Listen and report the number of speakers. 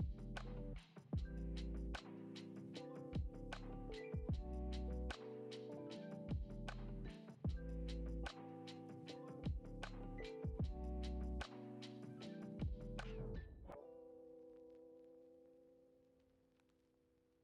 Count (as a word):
zero